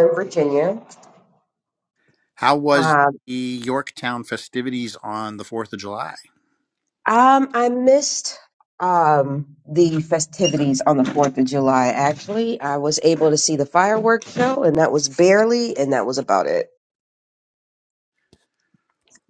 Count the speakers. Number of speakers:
two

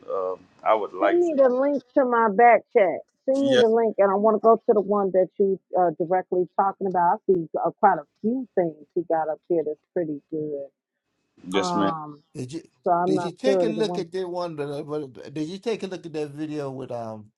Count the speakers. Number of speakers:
three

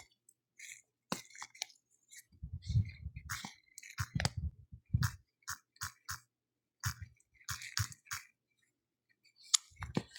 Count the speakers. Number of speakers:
zero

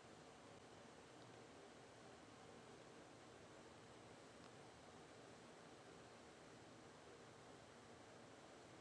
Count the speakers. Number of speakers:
zero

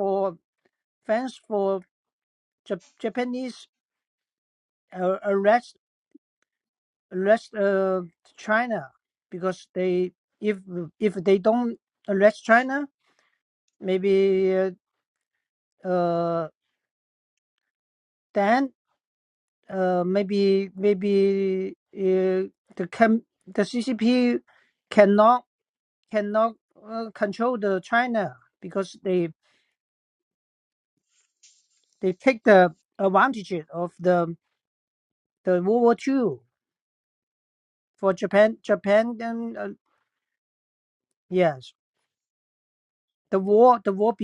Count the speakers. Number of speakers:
one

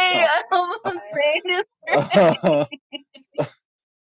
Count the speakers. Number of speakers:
two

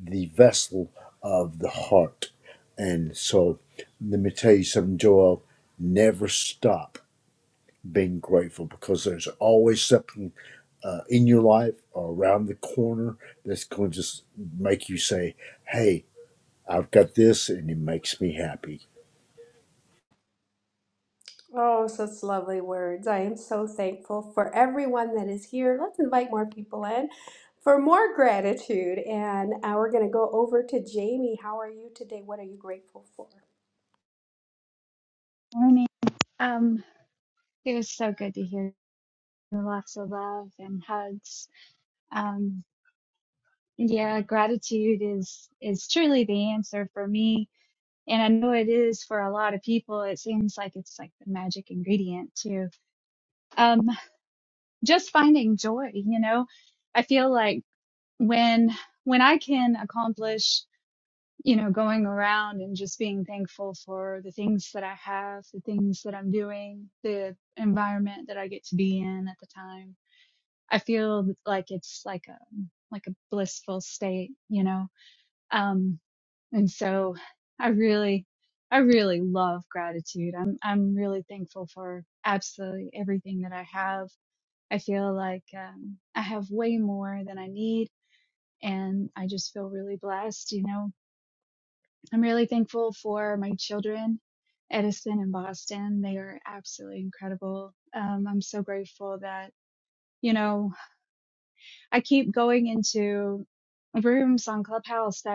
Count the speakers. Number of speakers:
three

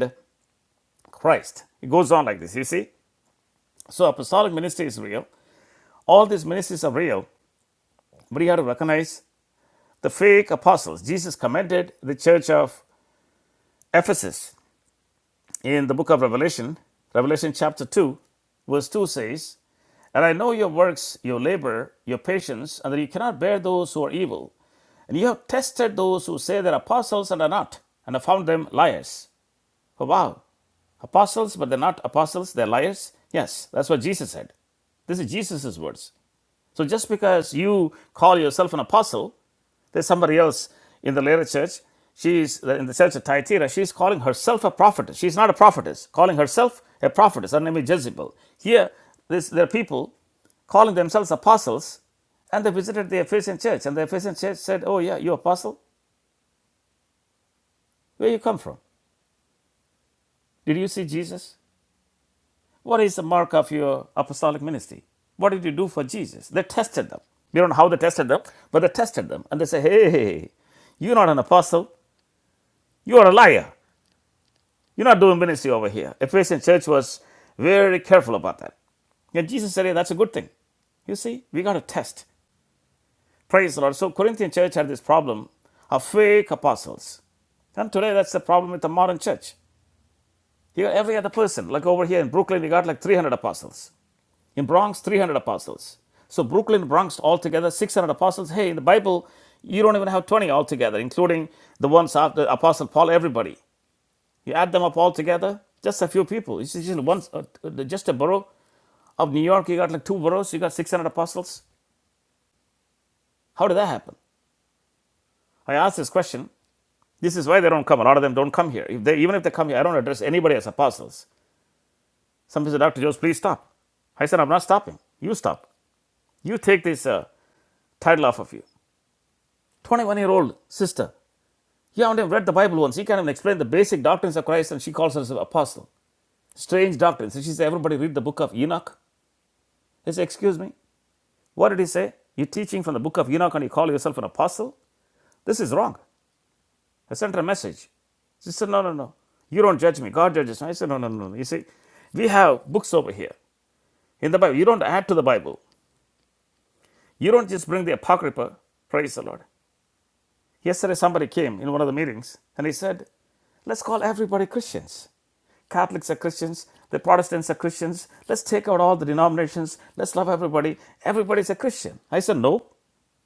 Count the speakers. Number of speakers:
one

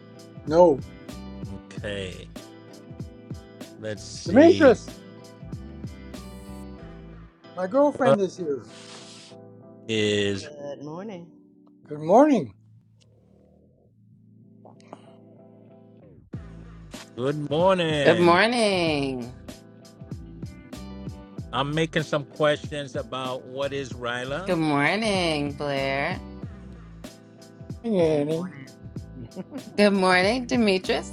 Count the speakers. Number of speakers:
four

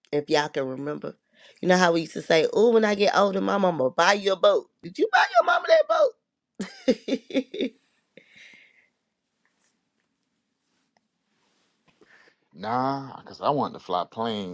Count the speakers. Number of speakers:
two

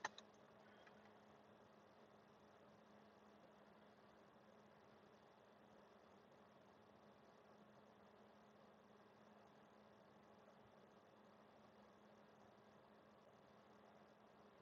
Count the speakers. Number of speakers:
zero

